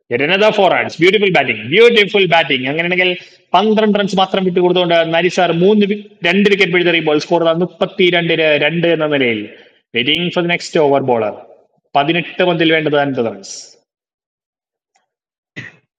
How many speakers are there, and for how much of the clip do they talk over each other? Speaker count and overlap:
1, no overlap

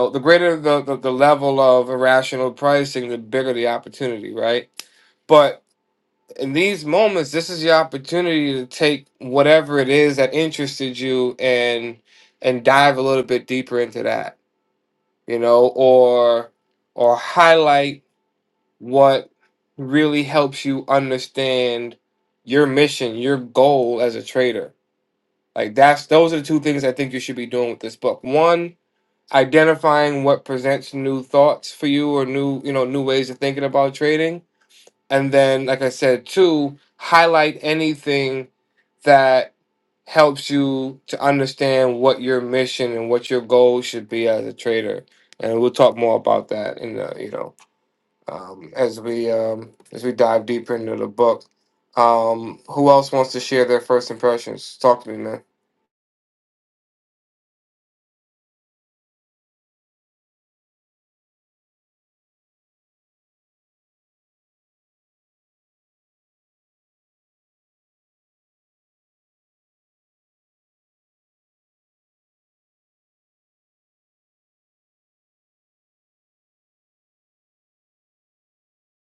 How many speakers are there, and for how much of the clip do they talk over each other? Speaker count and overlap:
1, no overlap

